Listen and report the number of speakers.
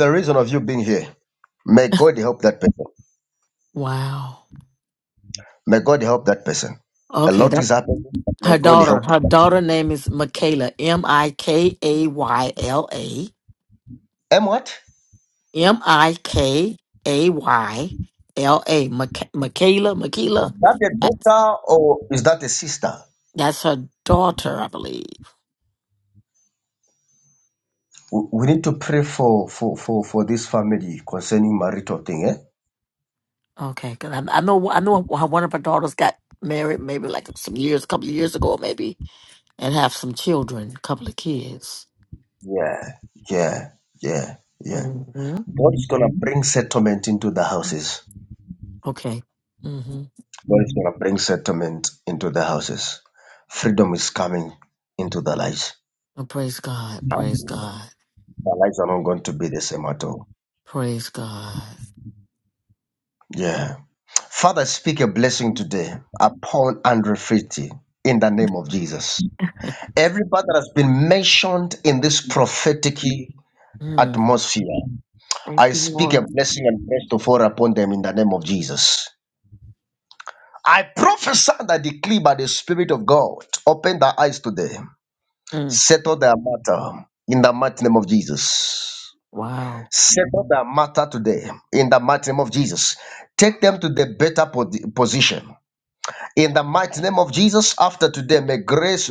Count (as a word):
two